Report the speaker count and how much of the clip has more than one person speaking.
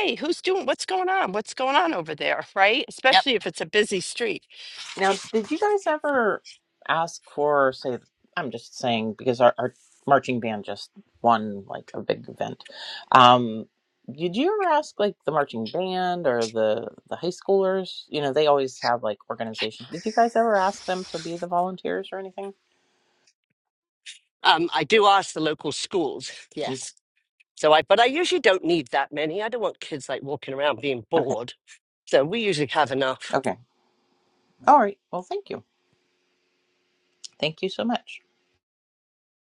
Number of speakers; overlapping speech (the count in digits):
3, about 1%